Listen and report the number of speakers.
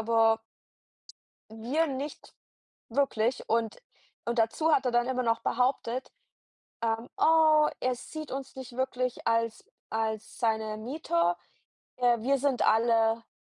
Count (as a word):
one